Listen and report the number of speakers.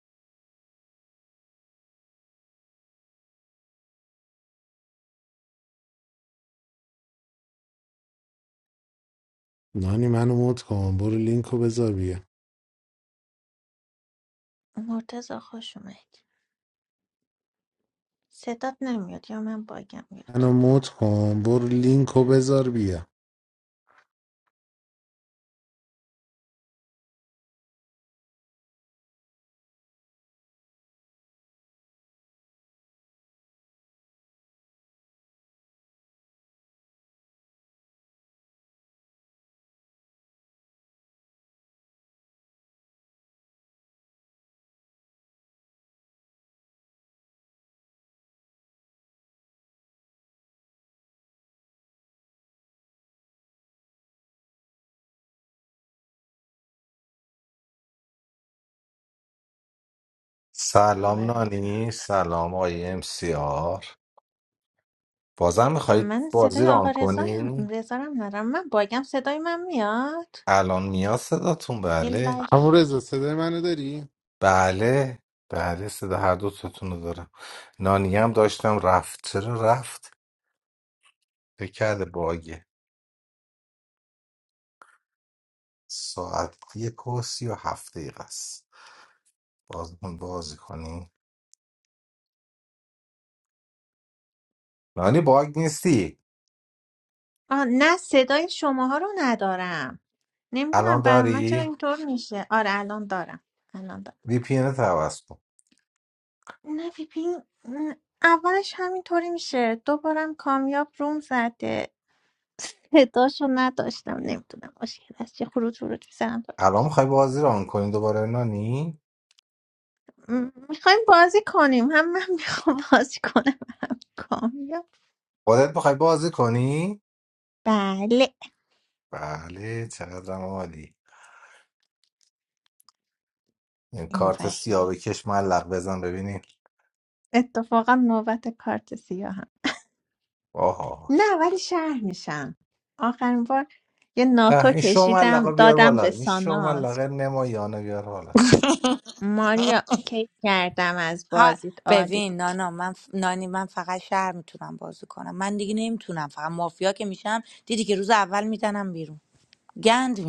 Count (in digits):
4